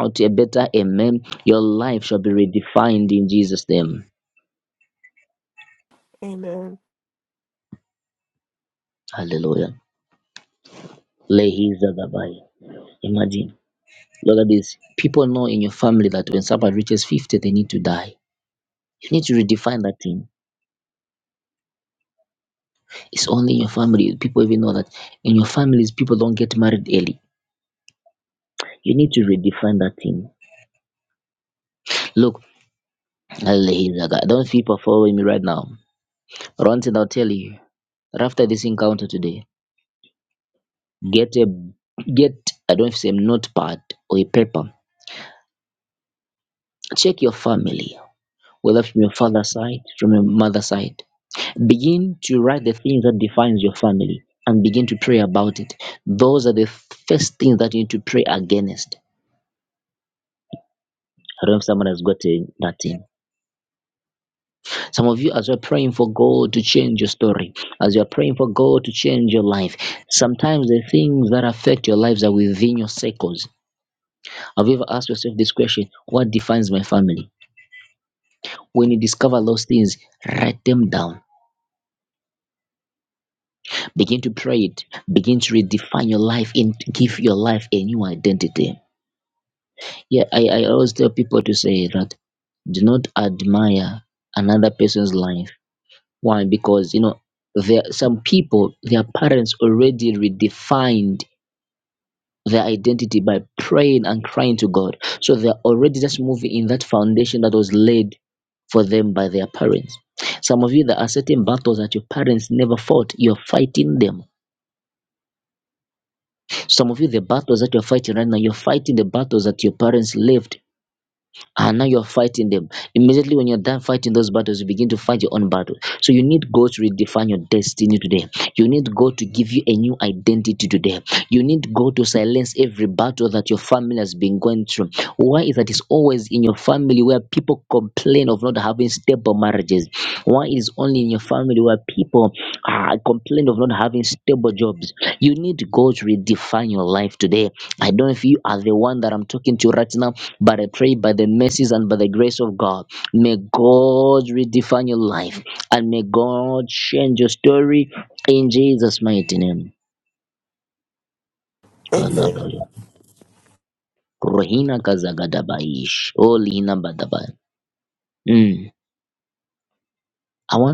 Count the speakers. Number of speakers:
2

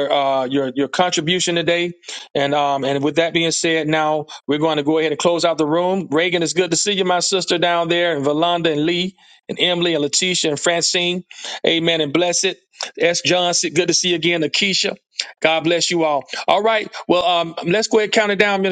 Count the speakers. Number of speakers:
1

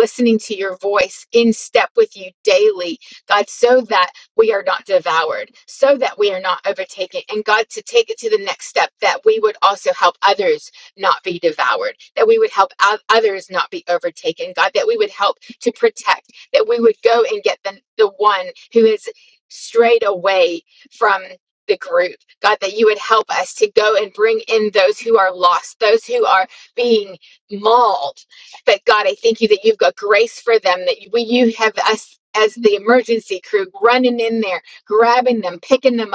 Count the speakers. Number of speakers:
1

